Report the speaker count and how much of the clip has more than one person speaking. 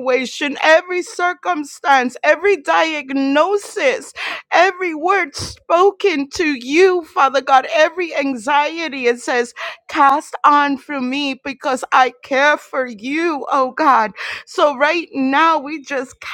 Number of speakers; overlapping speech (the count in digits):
1, no overlap